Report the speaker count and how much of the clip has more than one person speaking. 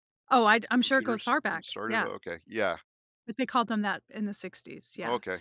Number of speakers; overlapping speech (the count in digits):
2, about 27%